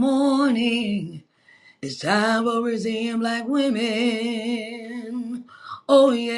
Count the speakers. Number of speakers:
one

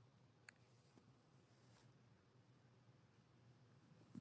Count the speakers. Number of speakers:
zero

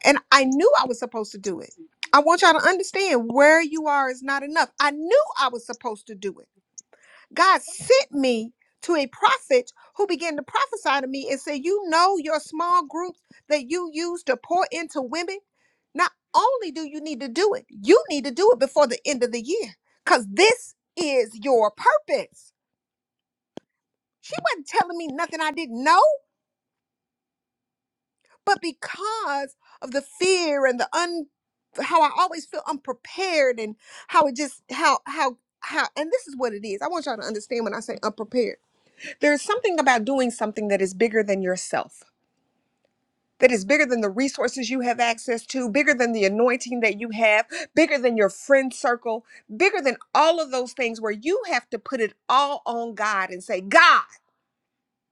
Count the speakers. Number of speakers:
one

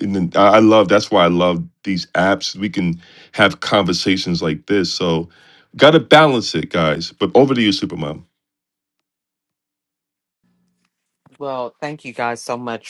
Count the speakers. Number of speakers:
two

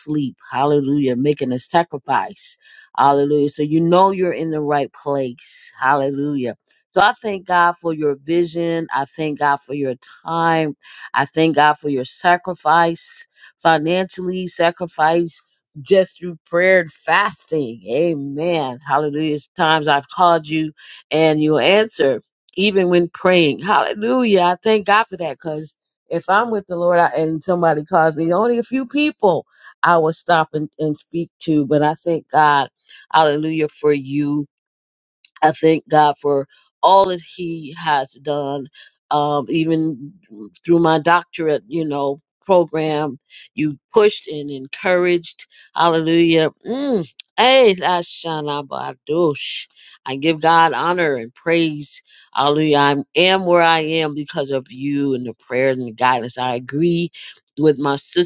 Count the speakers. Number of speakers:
one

